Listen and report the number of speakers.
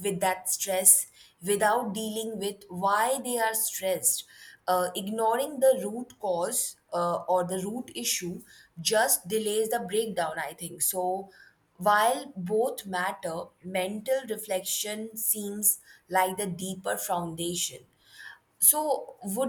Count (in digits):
1